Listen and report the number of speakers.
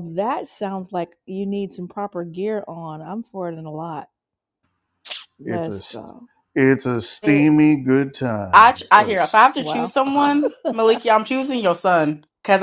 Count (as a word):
three